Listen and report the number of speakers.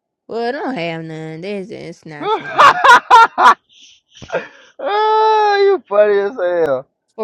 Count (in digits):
2